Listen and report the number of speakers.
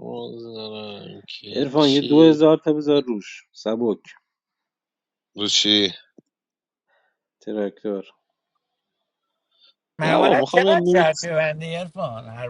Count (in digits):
3